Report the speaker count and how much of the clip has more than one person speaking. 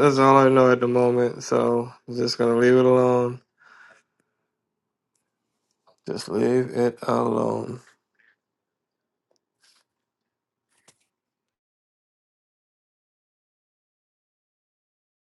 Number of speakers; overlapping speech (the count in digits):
1, no overlap